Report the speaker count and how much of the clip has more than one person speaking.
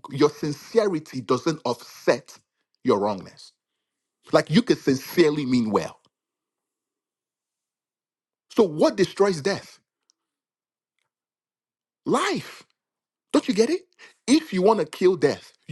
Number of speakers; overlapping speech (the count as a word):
one, no overlap